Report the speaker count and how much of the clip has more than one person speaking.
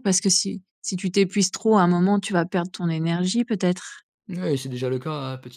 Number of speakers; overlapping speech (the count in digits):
2, no overlap